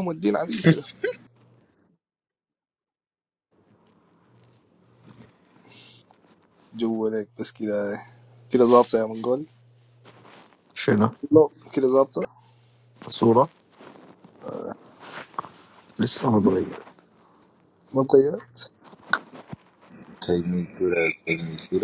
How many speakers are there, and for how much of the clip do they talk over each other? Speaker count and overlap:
three, no overlap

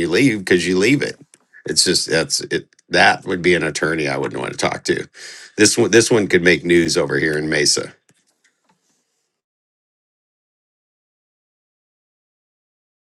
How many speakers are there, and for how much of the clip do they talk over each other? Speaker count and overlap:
one, no overlap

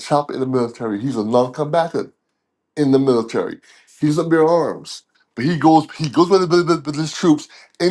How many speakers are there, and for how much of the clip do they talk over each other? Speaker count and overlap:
one, no overlap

